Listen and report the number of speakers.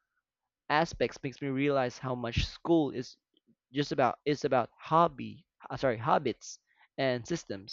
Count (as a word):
one